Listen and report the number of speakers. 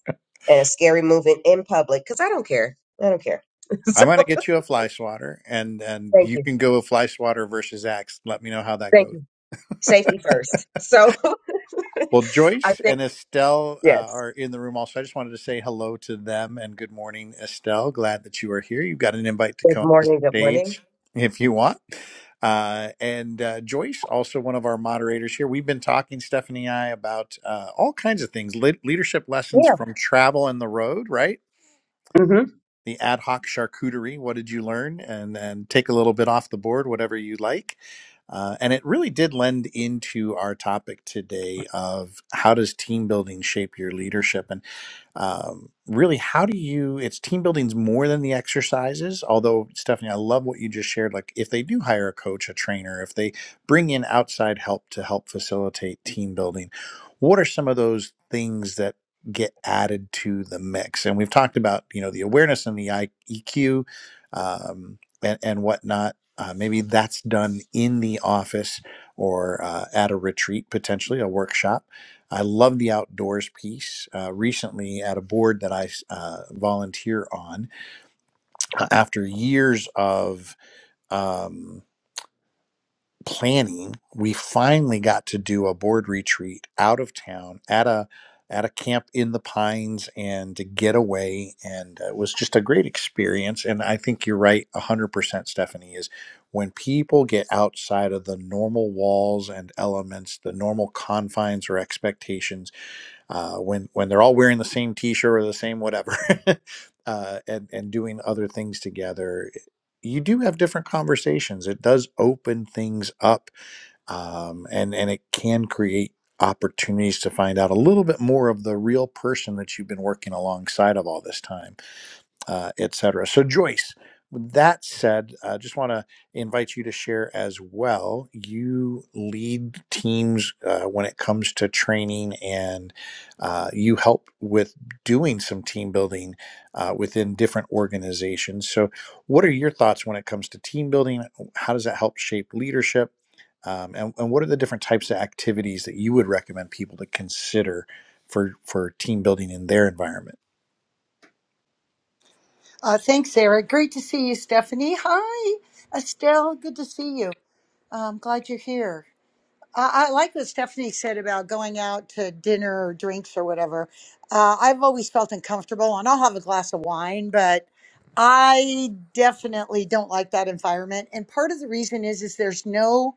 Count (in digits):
3